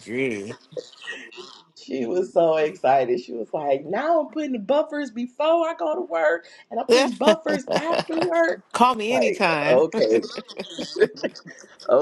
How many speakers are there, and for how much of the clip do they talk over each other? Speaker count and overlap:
two, about 6%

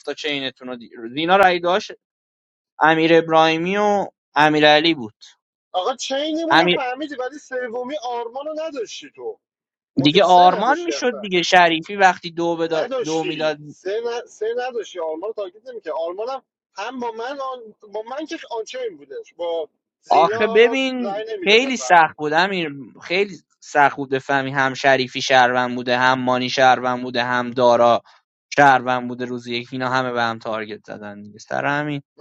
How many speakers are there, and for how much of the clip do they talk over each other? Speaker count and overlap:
two, about 12%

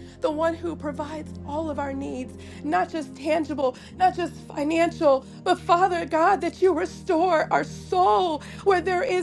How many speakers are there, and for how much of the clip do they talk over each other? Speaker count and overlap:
one, no overlap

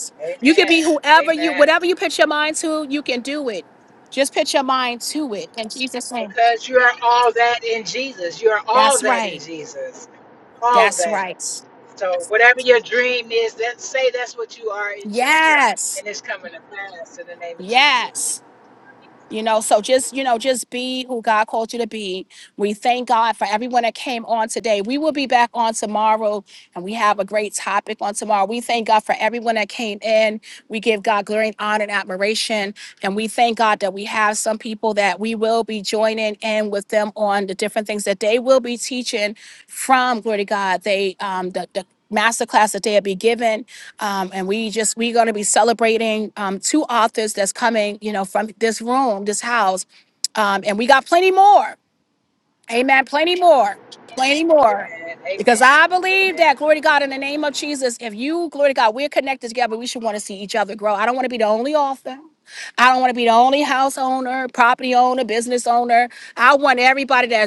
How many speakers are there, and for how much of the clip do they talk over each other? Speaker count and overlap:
two, about 6%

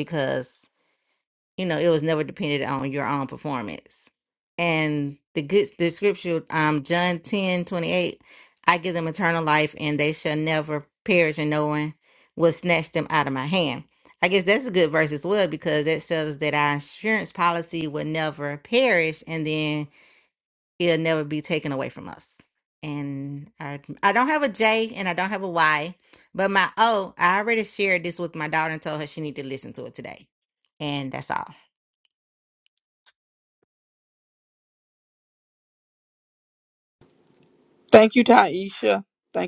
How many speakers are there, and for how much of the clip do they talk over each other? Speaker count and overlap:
two, no overlap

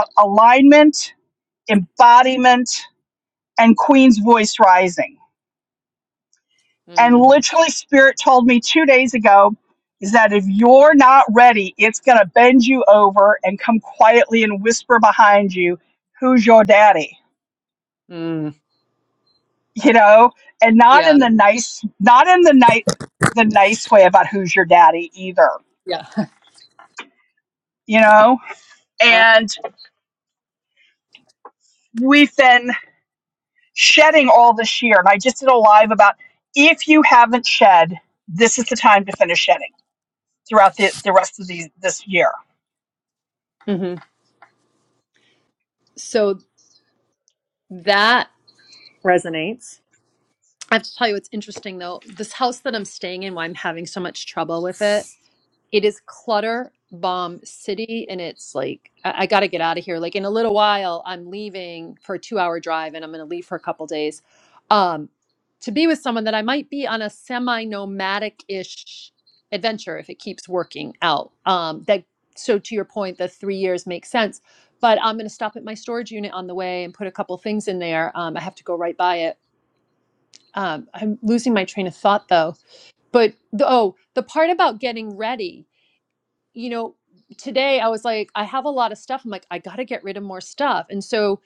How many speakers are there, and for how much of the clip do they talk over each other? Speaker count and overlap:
two, about 1%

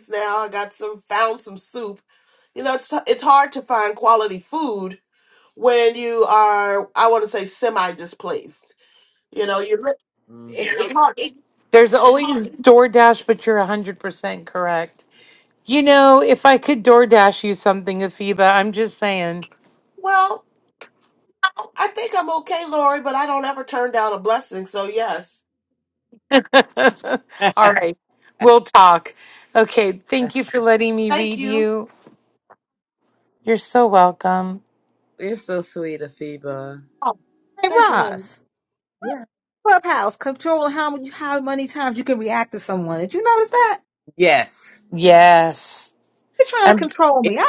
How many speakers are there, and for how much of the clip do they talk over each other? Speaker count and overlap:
four, about 3%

